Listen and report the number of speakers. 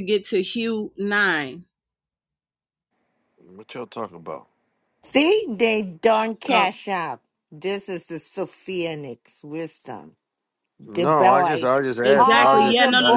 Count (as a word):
three